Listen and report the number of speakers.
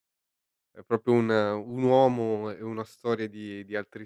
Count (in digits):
1